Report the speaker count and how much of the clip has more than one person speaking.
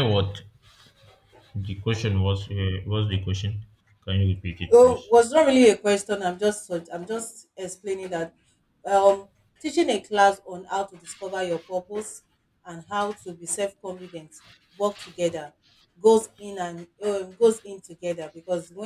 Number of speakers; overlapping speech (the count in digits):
2, about 2%